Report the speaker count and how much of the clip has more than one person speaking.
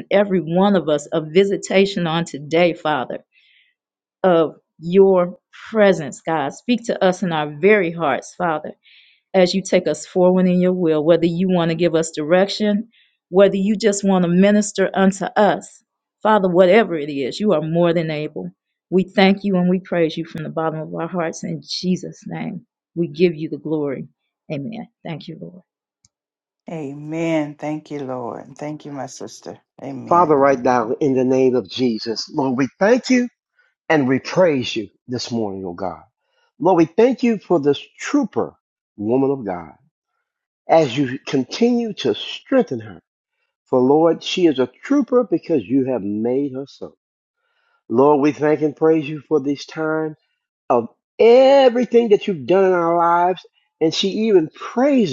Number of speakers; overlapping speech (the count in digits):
3, about 1%